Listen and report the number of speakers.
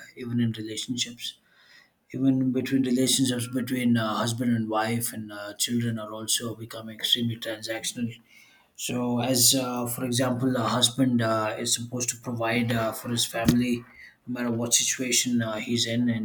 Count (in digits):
1